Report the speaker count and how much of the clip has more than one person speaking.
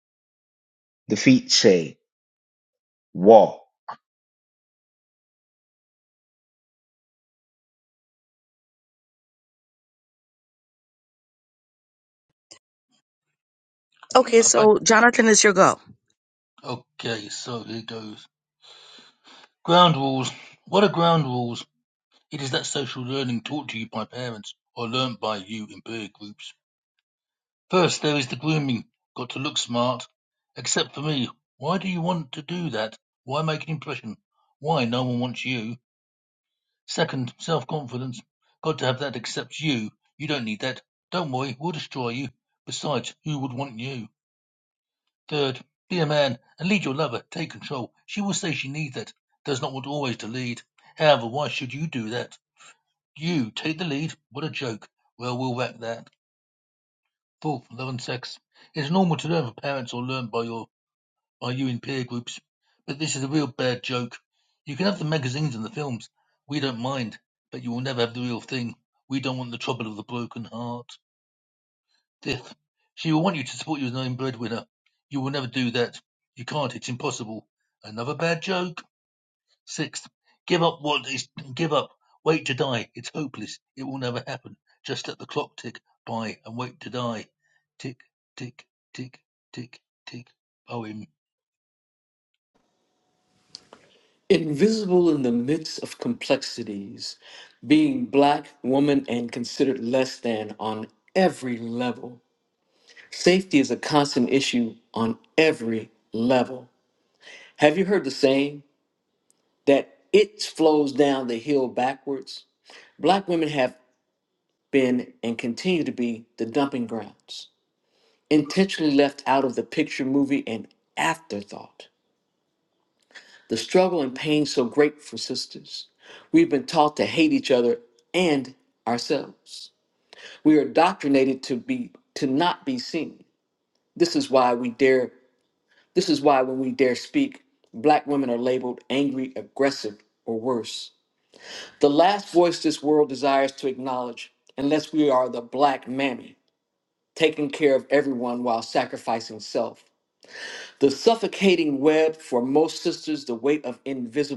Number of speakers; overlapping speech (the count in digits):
4, under 1%